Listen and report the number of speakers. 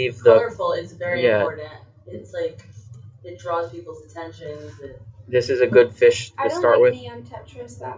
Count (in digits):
3